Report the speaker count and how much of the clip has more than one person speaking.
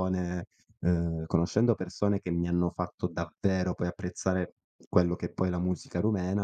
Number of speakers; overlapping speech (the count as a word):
one, no overlap